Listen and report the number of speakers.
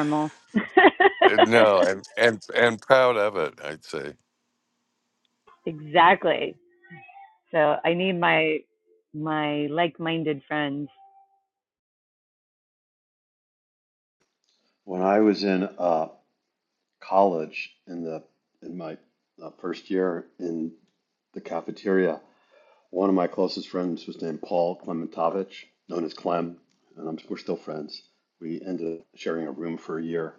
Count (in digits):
3